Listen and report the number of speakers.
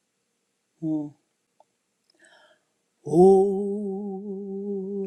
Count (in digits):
1